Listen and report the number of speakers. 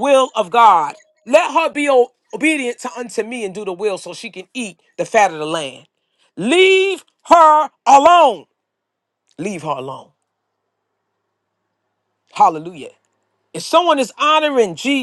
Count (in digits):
1